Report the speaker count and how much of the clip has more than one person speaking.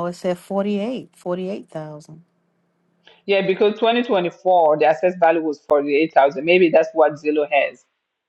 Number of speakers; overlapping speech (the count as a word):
two, no overlap